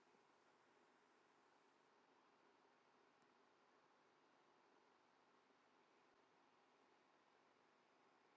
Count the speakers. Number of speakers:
0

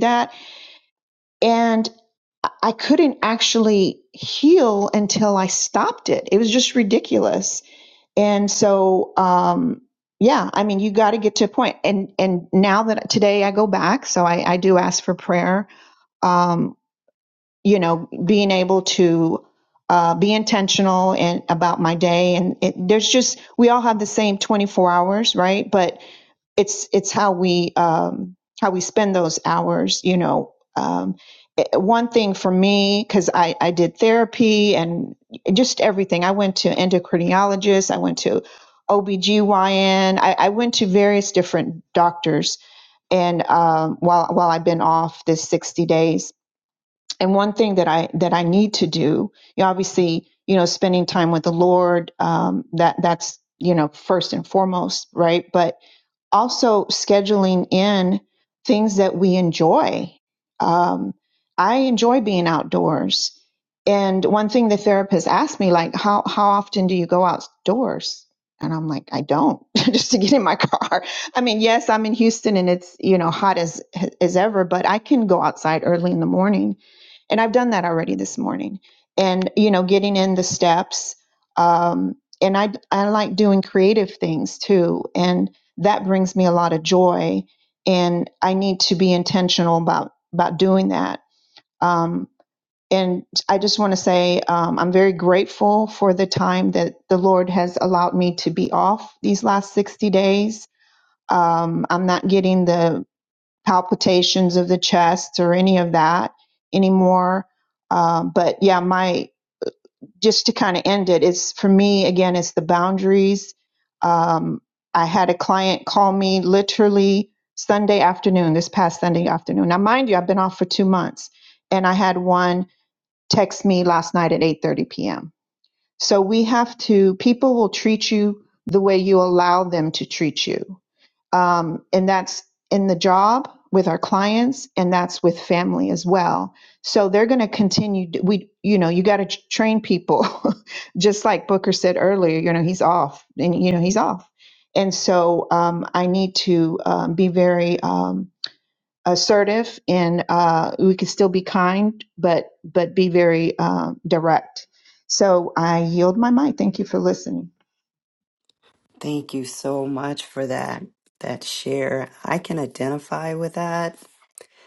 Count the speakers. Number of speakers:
2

